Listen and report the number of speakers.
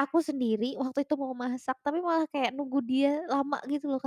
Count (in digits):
1